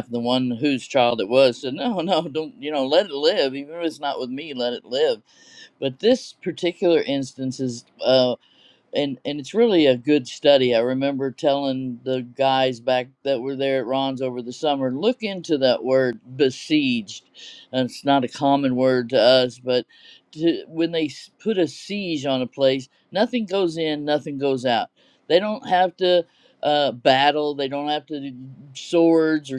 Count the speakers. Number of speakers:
1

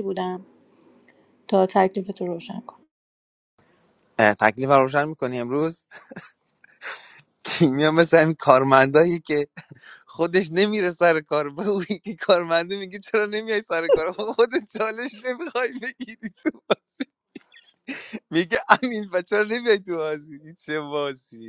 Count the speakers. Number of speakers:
2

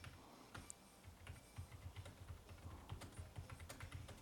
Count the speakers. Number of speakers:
0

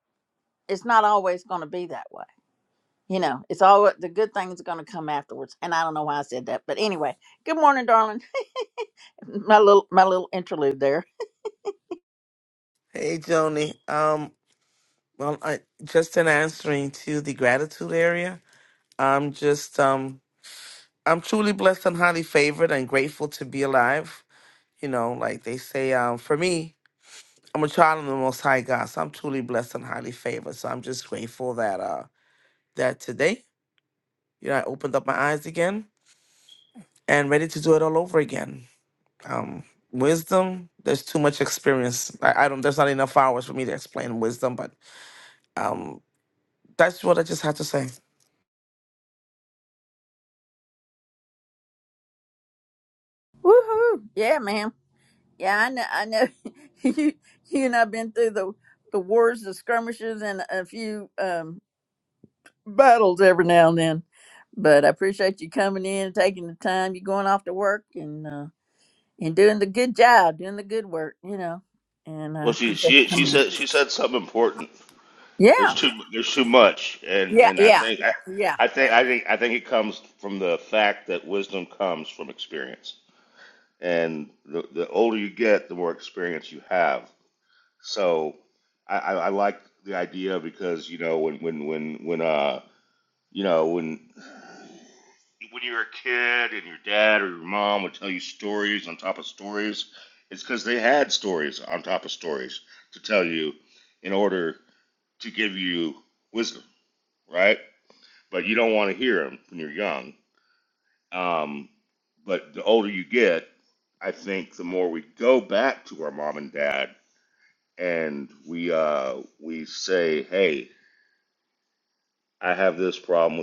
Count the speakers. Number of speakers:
3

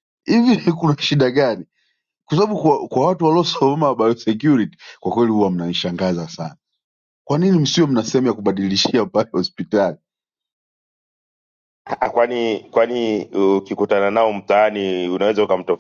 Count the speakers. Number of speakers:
2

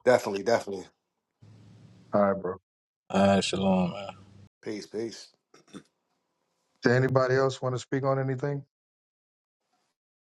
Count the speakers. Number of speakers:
3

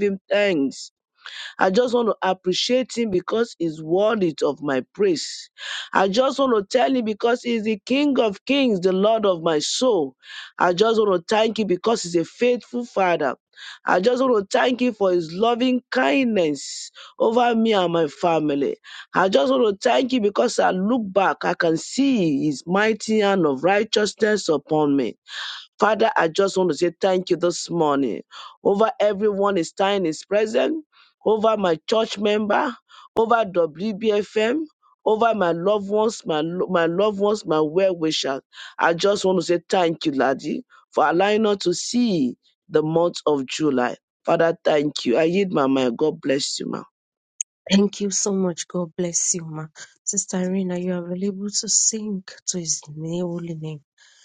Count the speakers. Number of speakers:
2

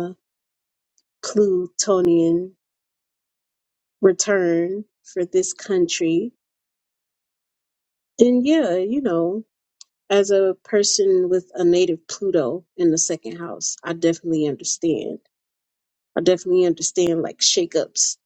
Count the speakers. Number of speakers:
1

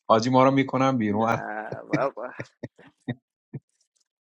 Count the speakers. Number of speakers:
2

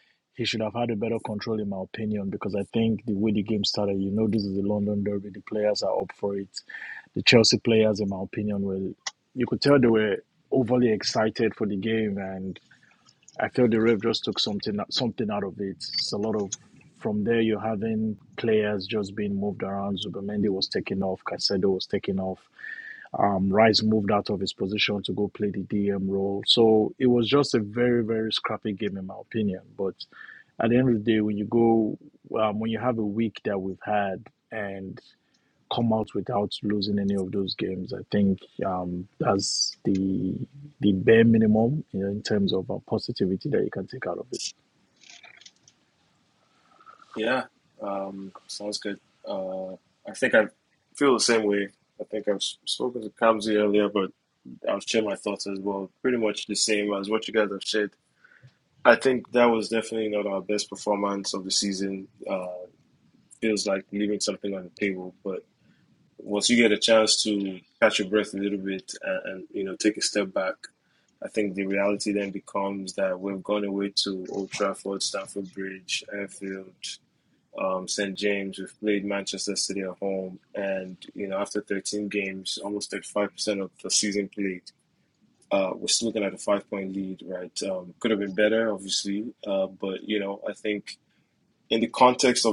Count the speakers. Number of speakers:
2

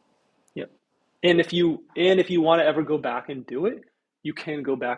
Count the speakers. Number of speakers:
1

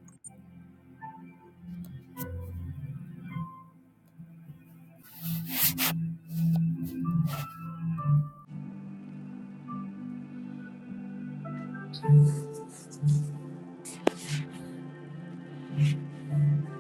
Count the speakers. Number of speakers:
0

